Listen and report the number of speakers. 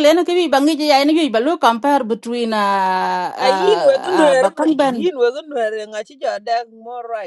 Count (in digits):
2